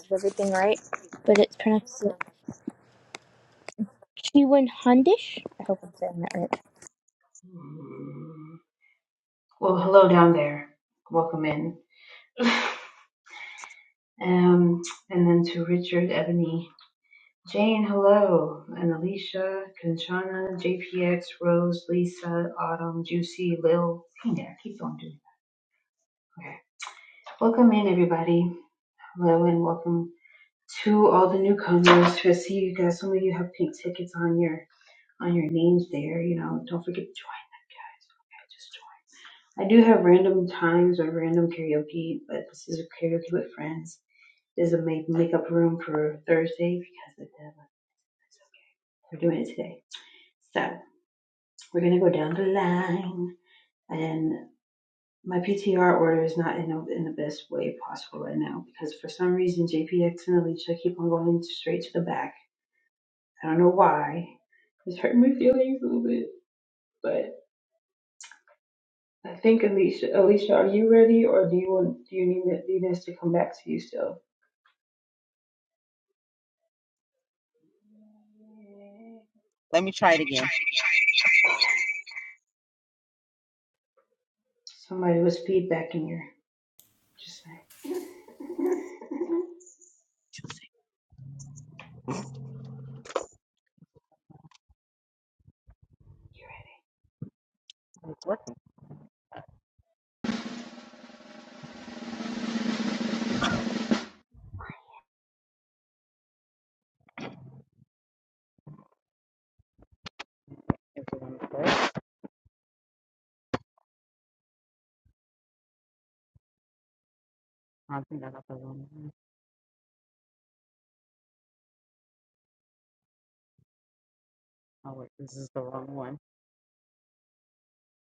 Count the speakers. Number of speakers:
3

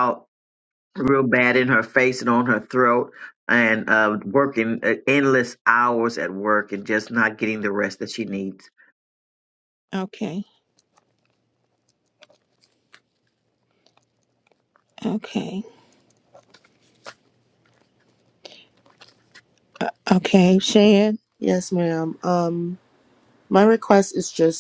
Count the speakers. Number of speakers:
3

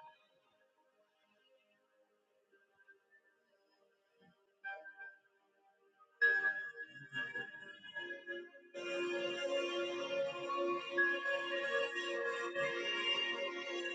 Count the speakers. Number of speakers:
0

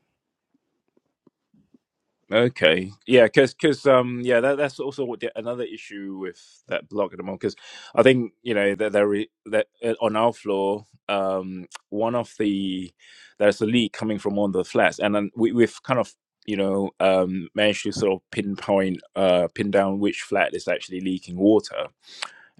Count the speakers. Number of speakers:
1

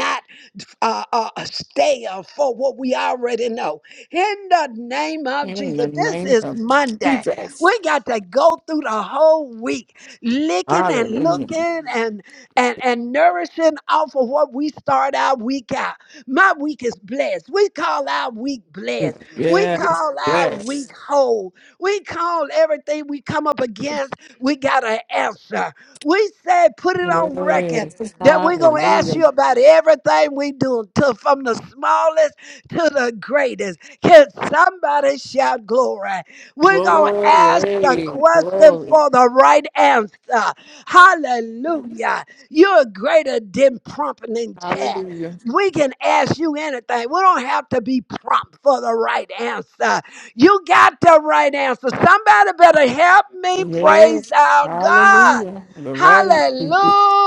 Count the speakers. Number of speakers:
2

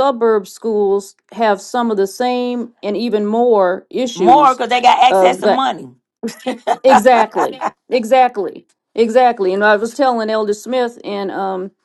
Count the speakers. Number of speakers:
2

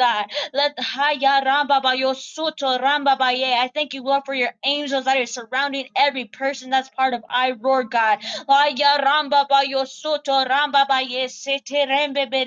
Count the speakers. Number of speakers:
1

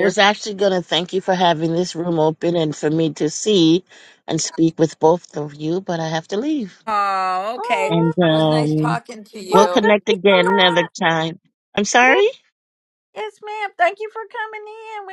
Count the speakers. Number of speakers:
3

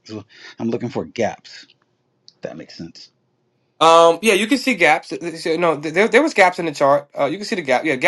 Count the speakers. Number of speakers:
2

